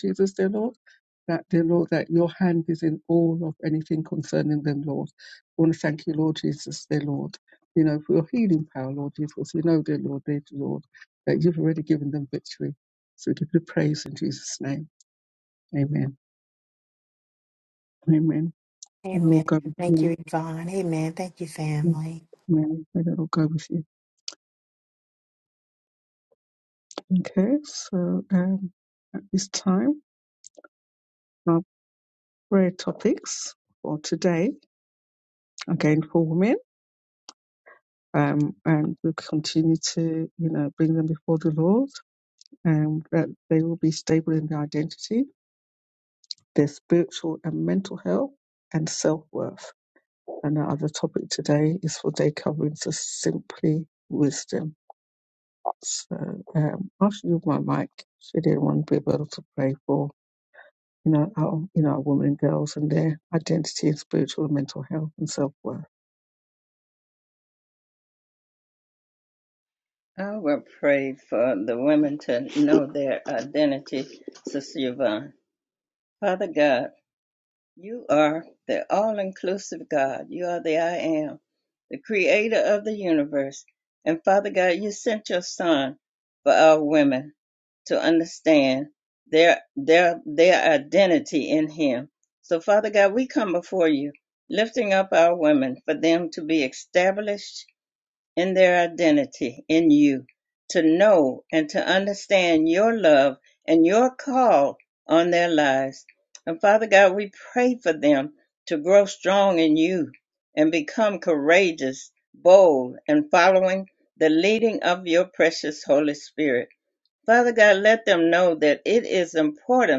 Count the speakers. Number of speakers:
3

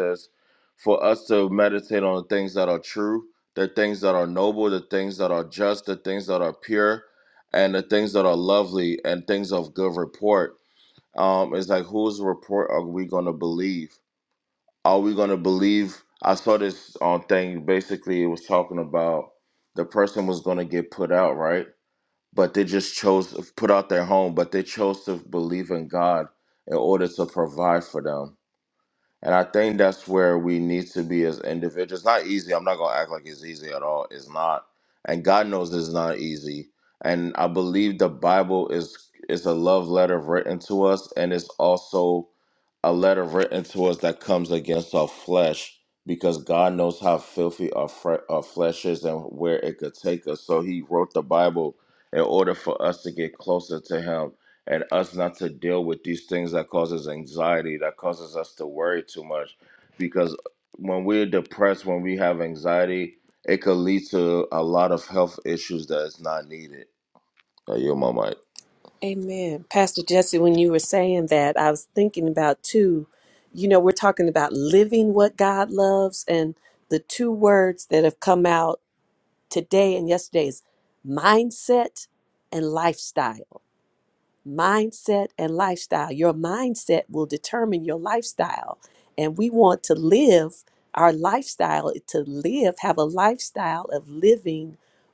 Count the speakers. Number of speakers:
2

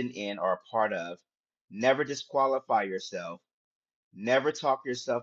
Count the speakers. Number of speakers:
1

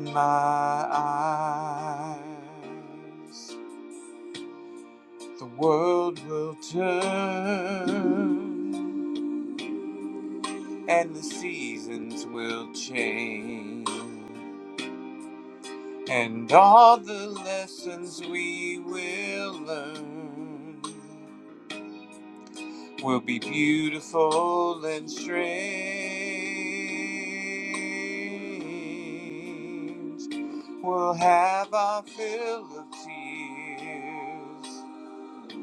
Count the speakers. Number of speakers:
1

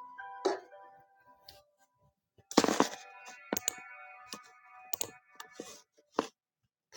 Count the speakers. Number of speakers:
0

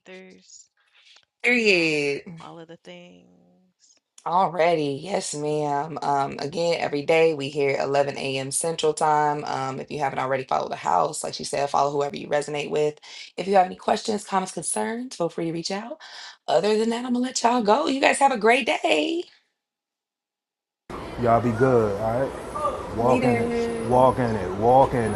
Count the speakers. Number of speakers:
3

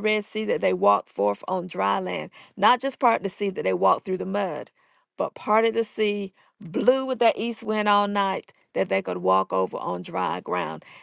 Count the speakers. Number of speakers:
1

